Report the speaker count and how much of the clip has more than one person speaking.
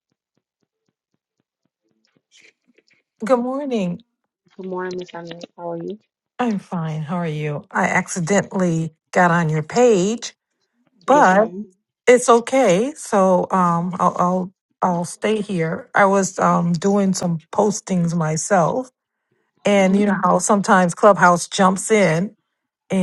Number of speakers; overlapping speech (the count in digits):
2, about 3%